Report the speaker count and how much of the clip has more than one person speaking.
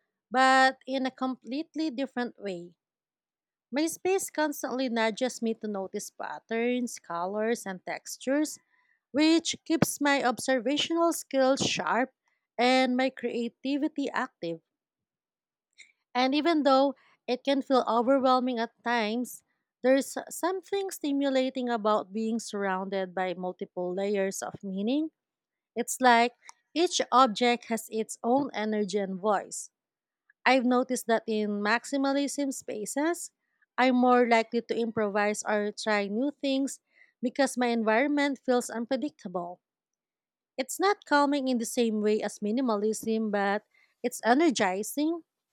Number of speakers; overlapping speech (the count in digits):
1, no overlap